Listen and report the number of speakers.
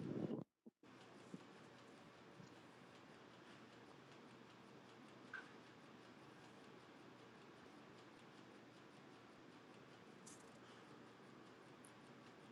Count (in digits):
0